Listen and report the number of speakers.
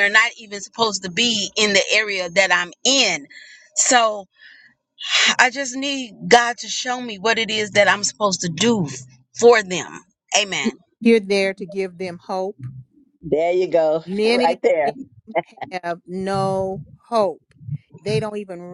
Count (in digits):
3